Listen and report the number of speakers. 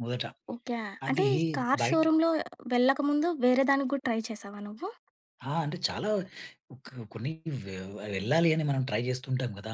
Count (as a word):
two